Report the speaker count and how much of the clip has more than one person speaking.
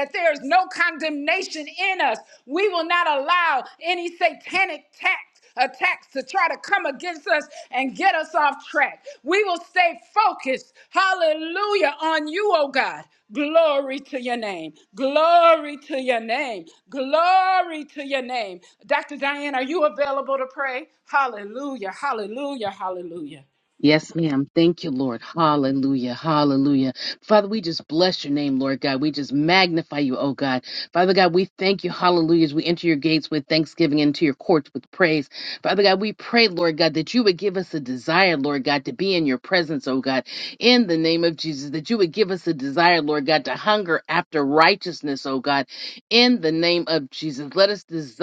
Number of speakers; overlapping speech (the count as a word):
two, no overlap